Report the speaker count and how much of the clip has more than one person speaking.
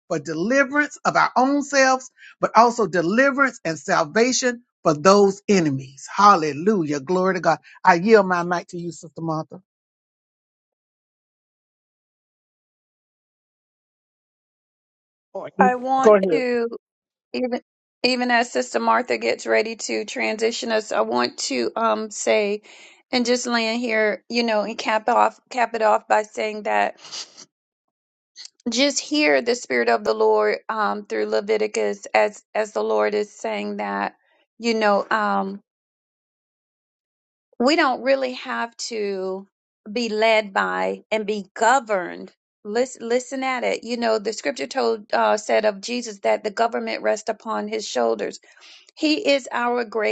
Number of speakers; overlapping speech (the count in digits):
2, no overlap